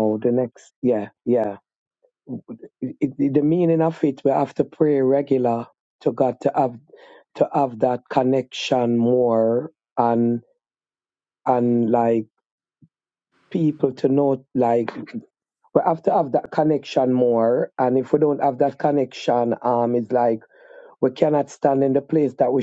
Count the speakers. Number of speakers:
one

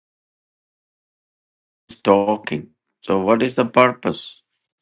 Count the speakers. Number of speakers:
one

